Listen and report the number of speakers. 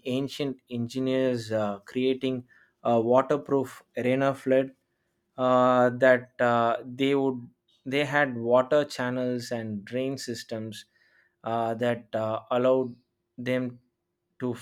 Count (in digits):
1